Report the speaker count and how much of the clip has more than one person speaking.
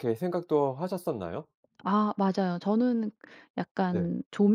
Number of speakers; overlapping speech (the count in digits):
2, about 4%